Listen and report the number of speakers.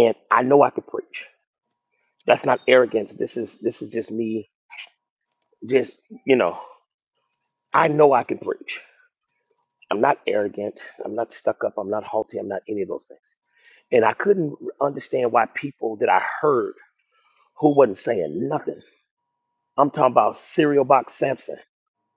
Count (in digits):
1